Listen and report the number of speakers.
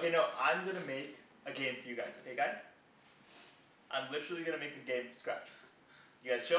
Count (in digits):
1